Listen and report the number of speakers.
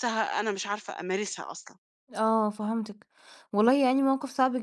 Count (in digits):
2